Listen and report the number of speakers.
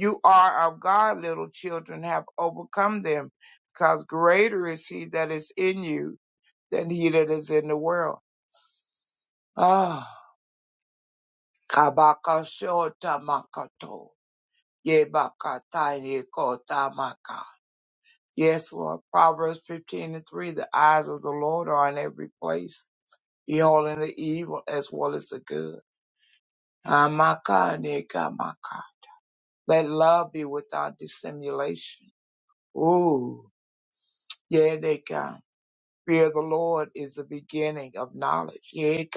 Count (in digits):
1